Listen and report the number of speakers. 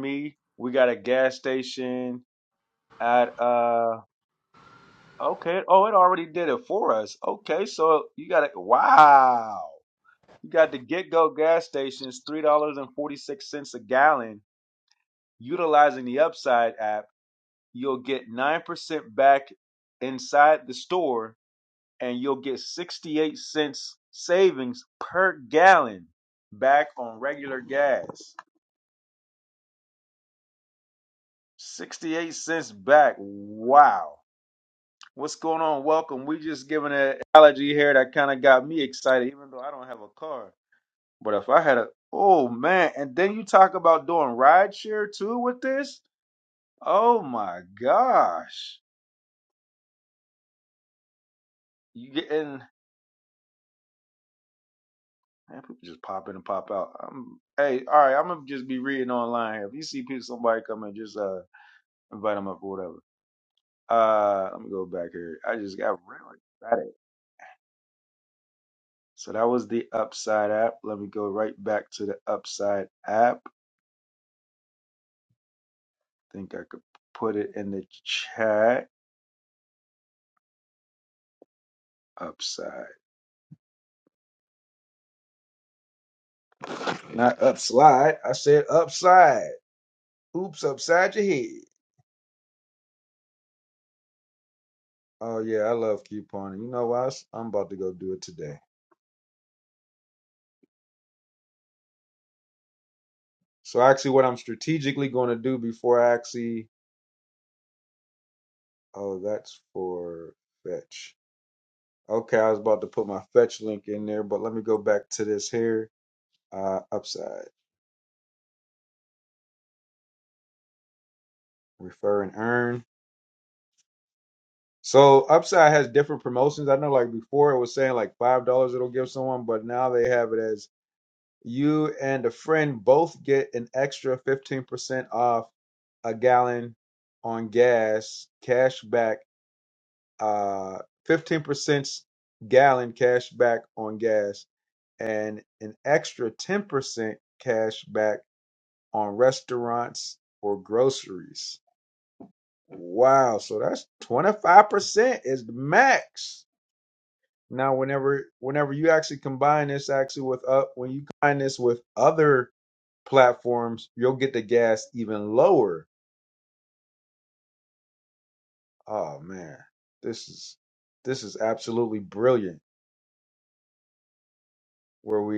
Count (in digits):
1